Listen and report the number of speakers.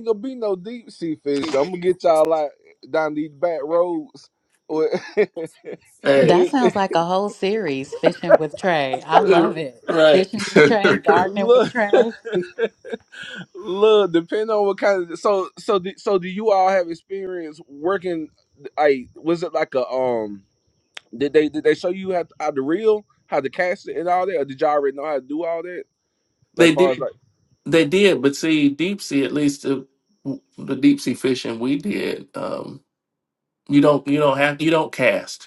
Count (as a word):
three